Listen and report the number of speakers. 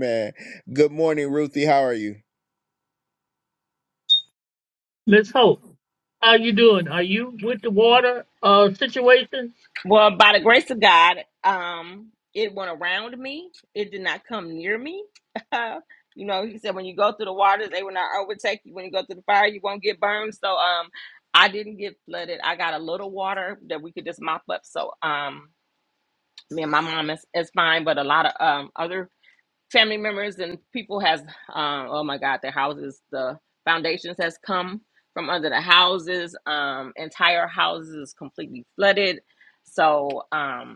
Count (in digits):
3